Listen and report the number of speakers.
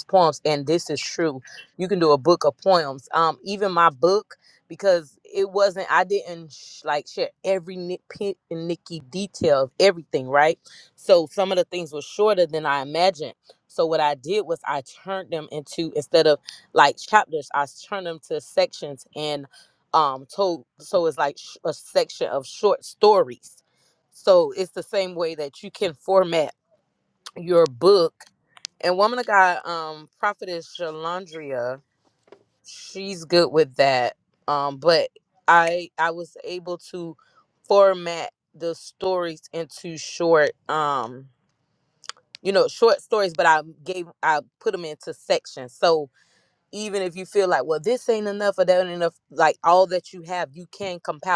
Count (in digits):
1